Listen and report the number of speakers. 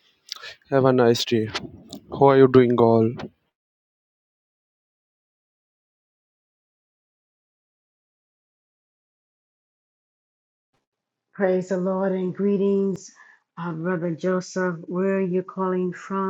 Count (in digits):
2